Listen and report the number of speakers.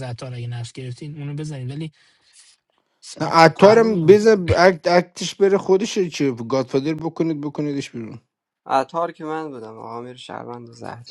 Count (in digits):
3